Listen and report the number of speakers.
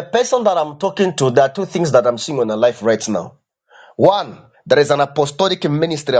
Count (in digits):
1